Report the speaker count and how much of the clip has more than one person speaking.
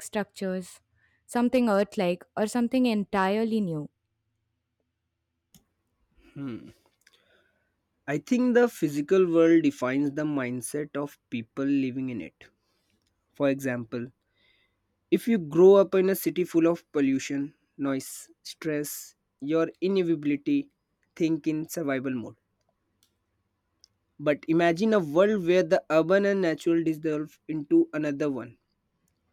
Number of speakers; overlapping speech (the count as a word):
two, no overlap